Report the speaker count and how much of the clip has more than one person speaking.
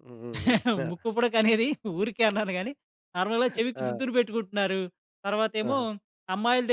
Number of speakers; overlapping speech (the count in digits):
2, about 8%